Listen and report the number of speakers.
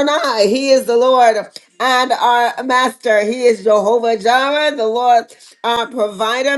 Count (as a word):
one